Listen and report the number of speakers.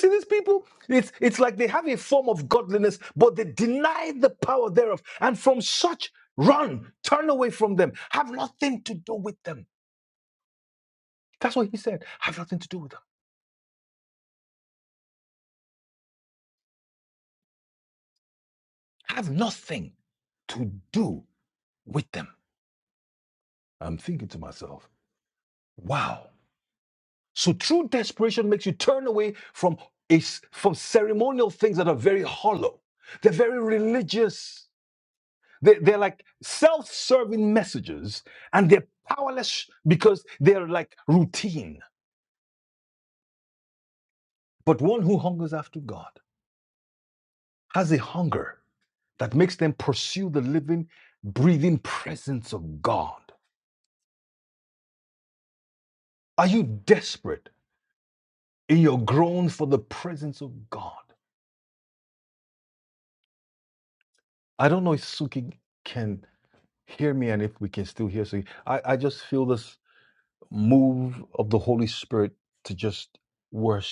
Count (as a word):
one